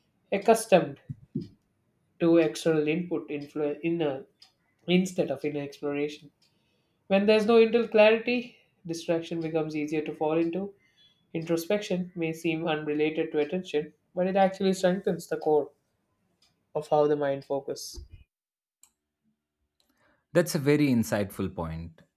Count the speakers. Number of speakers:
two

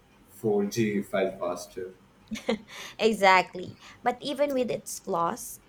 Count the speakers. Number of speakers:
two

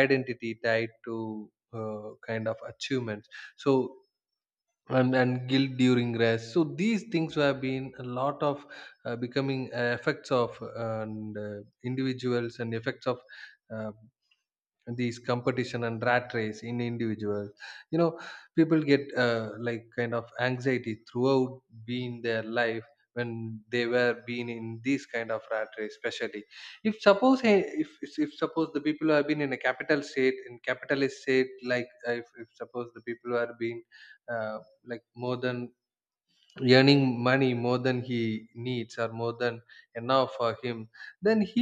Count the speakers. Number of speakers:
one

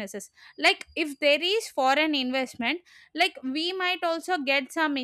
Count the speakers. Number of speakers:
one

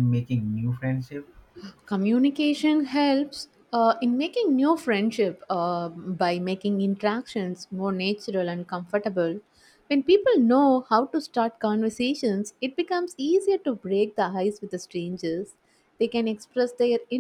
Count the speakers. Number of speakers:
two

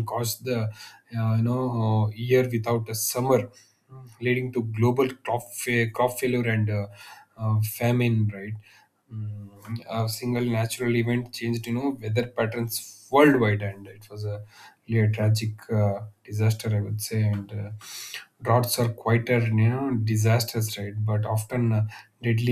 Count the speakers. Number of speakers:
one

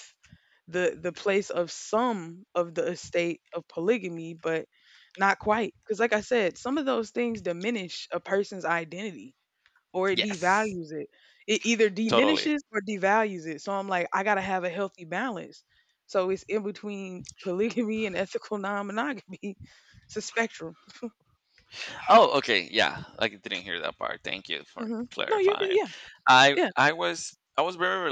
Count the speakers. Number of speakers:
two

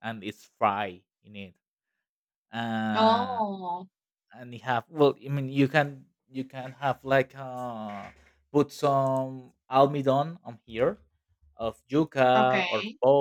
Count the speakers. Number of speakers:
two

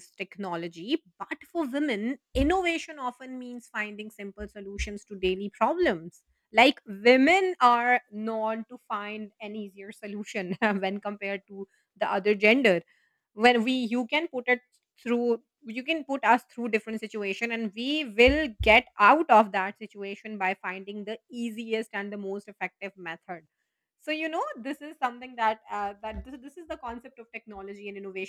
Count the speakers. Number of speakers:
one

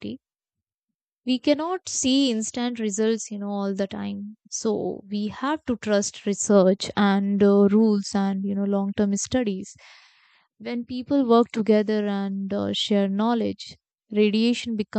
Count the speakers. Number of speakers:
one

